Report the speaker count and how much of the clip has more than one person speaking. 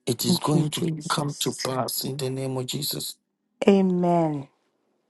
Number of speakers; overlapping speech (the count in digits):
2, about 21%